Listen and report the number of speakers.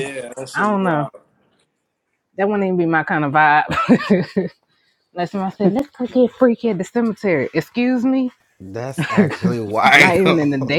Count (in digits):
3